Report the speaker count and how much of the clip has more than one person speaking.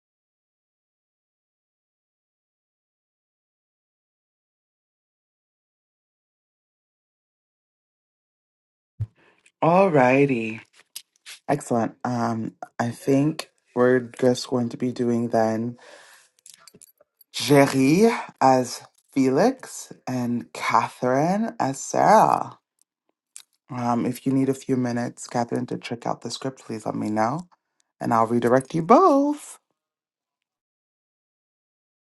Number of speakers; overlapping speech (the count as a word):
one, no overlap